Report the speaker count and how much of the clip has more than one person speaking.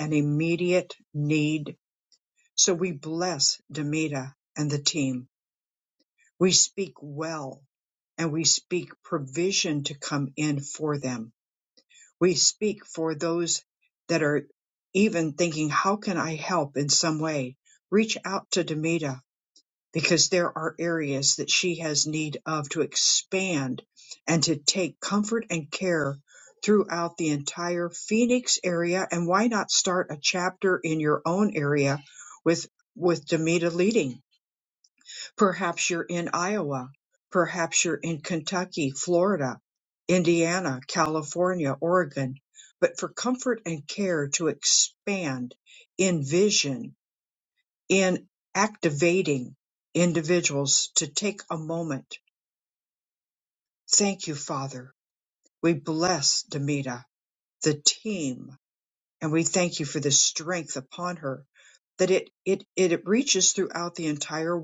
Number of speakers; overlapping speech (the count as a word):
one, no overlap